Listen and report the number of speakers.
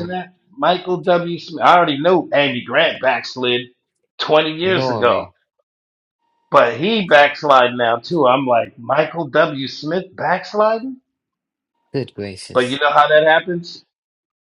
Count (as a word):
two